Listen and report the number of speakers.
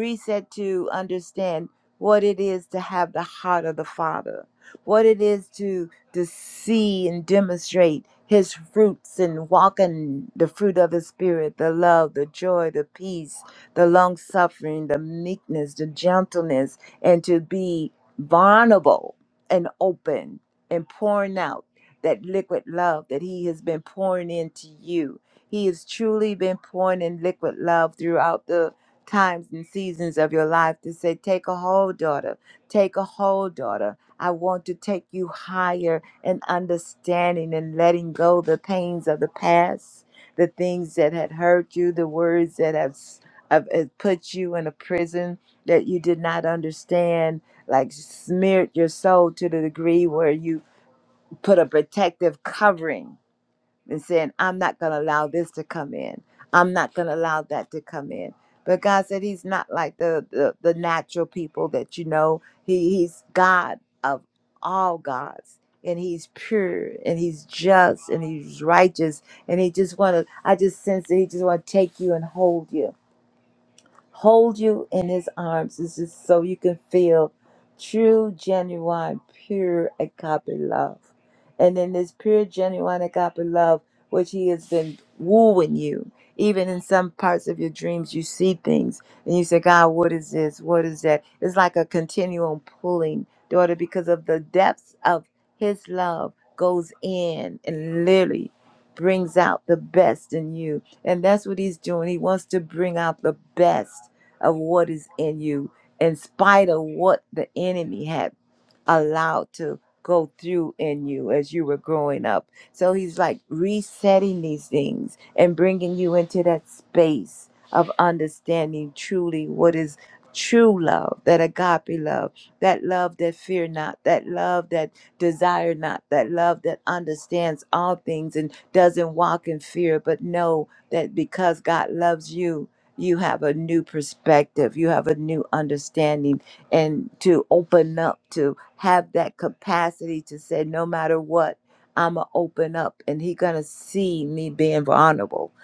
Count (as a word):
one